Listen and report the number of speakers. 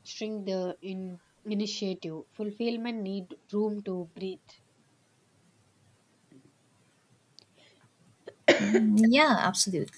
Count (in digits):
2